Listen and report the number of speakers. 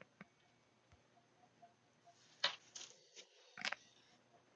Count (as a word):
zero